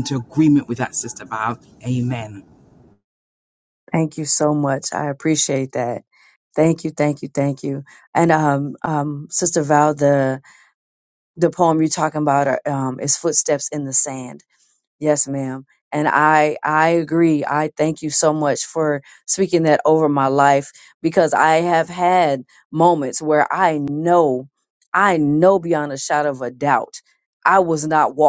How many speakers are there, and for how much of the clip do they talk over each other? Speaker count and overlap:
two, no overlap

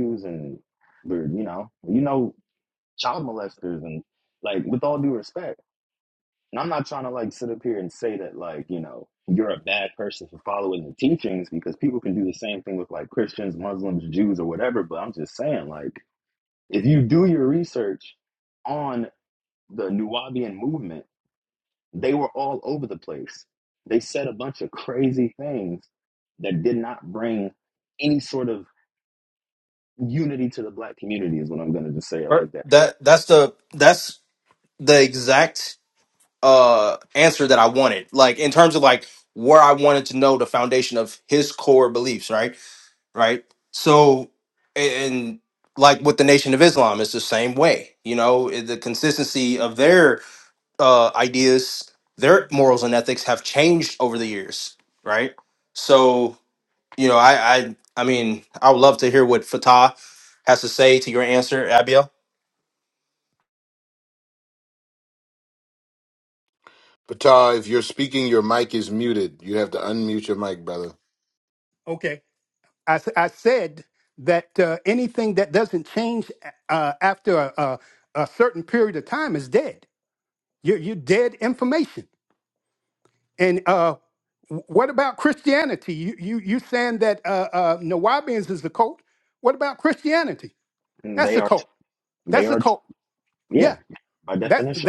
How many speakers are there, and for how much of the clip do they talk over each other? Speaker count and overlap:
four, about 2%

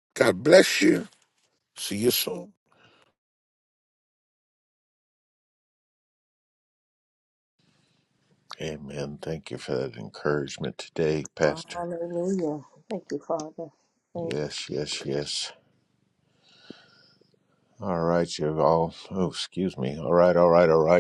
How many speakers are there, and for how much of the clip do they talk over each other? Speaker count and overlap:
three, about 3%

